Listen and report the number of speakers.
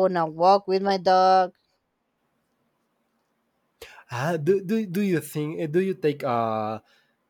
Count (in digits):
2